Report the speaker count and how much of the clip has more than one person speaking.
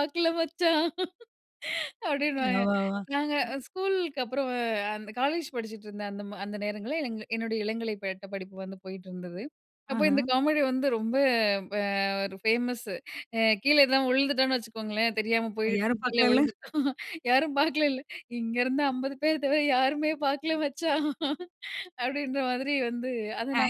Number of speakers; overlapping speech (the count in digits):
2, about 7%